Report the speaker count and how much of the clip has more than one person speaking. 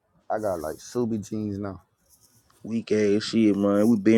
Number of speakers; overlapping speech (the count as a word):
two, no overlap